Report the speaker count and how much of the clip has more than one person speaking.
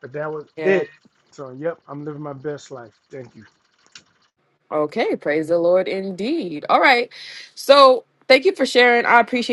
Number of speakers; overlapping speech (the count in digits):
2, about 3%